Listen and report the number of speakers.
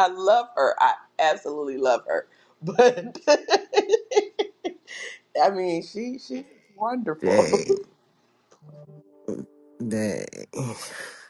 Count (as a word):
two